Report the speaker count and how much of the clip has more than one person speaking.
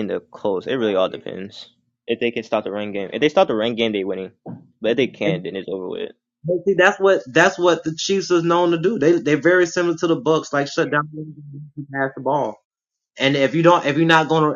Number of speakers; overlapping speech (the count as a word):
two, about 1%